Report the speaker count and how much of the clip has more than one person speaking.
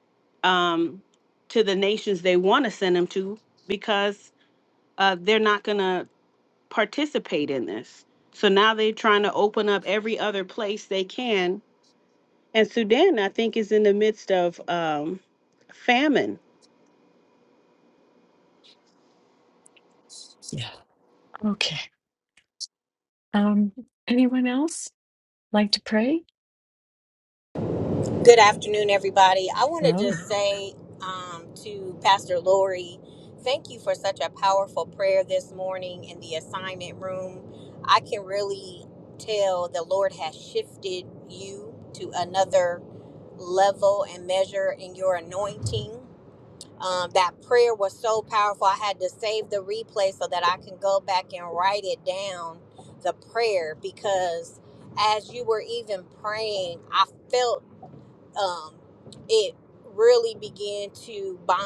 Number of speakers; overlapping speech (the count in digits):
3, about 1%